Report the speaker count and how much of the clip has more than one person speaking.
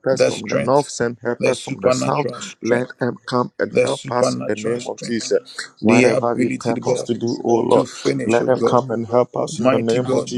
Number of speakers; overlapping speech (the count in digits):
2, about 60%